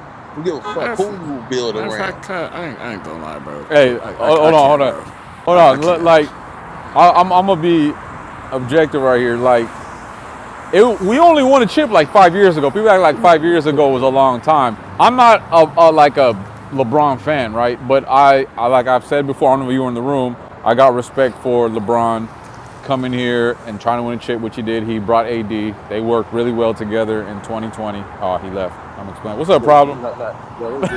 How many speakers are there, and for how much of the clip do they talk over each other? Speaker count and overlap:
4, about 11%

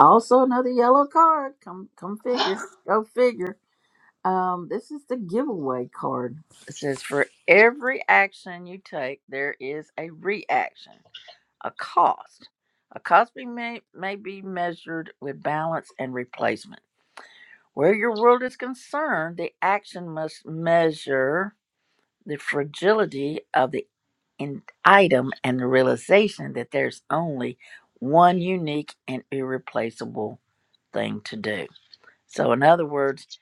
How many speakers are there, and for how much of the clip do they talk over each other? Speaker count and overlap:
1, no overlap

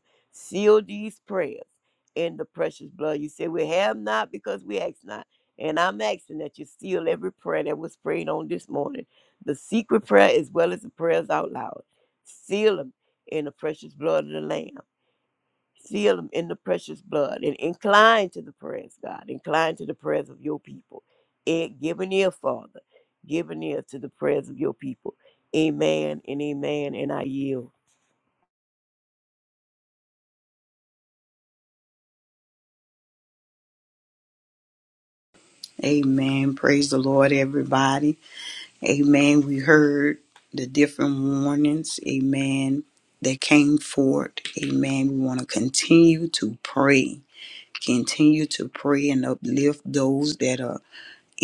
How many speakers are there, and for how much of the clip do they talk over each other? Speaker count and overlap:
2, no overlap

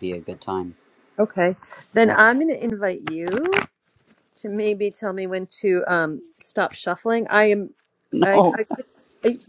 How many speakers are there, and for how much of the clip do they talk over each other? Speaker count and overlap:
2, about 5%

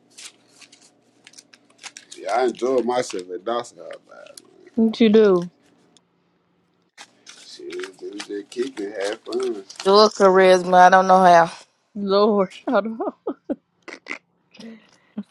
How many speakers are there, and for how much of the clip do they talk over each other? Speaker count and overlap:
3, no overlap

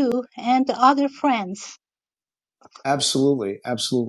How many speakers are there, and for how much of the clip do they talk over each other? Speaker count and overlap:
2, no overlap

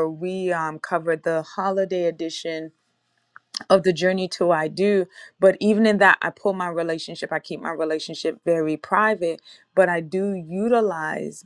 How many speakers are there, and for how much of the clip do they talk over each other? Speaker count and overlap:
1, no overlap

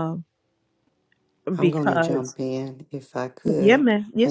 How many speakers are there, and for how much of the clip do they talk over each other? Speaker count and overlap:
2, about 25%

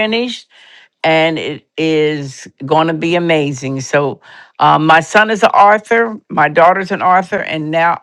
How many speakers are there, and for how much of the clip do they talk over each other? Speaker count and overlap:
1, no overlap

